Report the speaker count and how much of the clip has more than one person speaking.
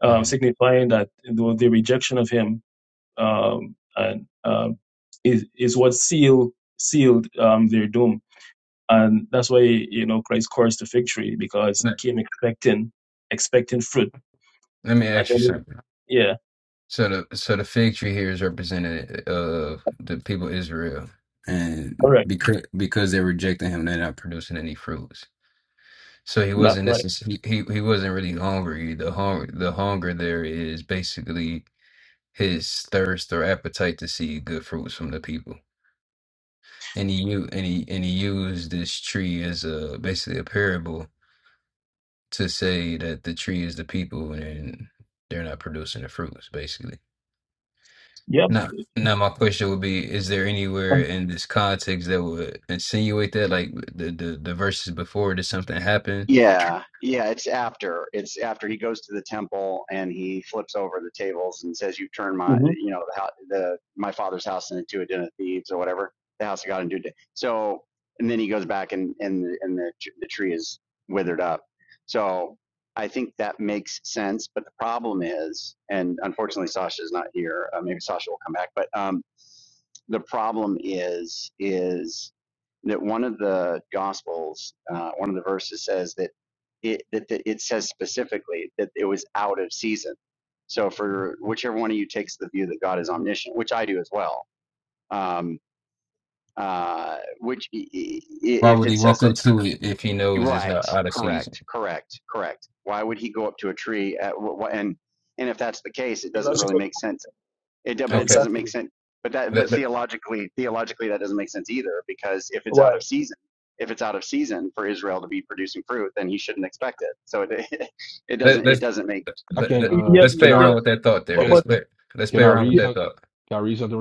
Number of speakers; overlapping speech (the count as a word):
four, about 7%